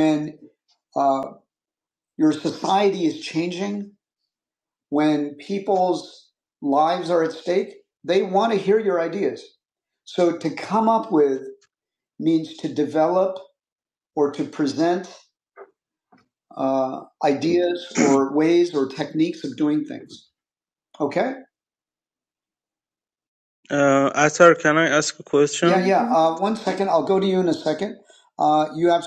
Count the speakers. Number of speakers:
2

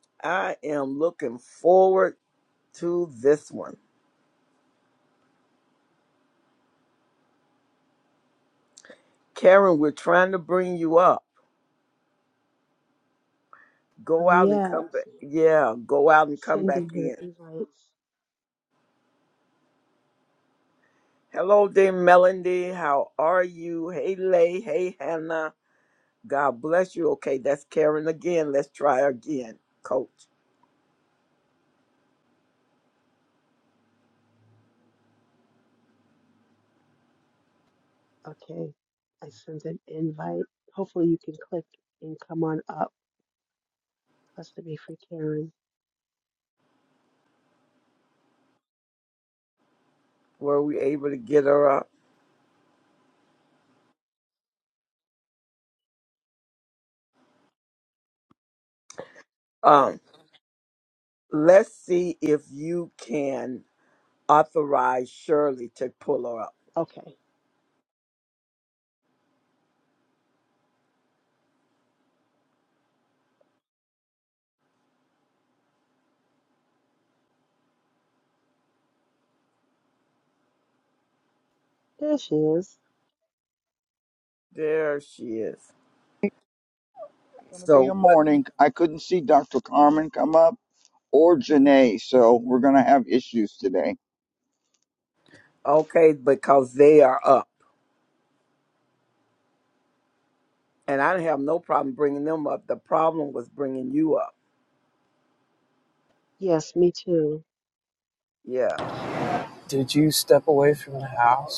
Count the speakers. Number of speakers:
4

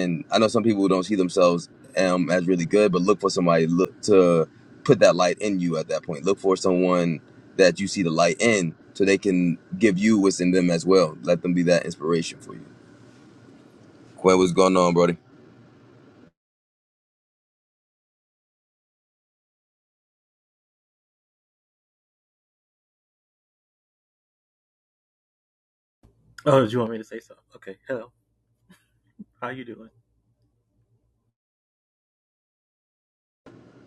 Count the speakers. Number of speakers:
2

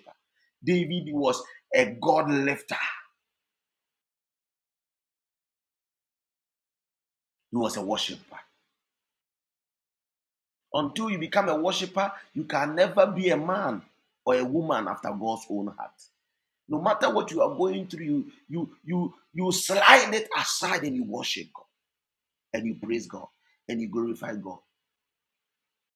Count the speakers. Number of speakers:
1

